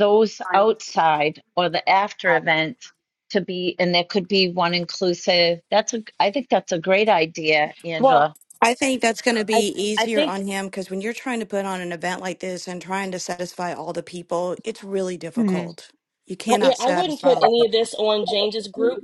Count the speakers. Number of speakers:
3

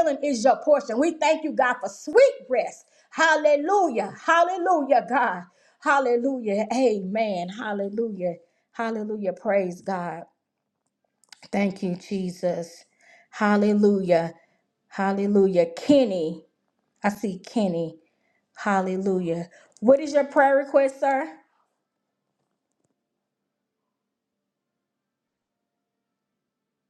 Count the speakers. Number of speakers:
1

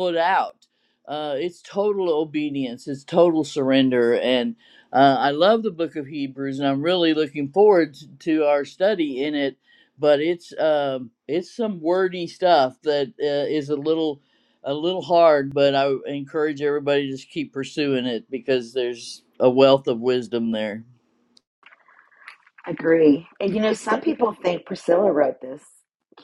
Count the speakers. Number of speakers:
2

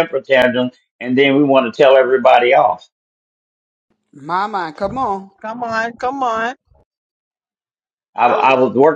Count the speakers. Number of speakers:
3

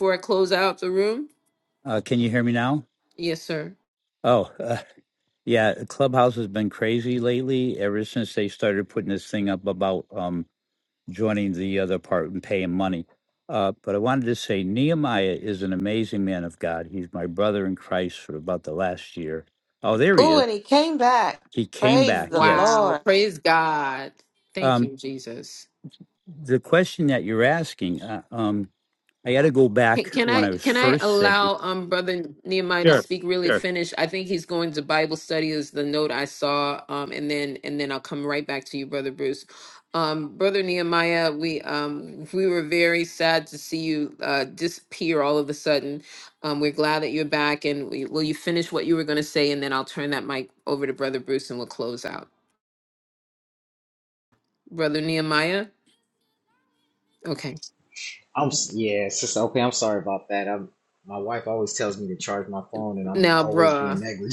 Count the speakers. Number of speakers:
4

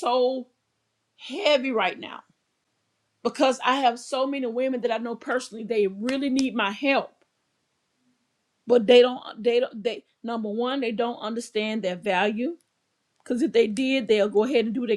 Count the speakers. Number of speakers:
1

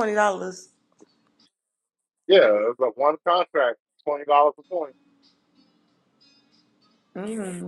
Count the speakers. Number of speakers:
2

